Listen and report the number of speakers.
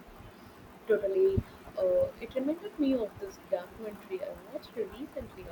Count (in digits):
1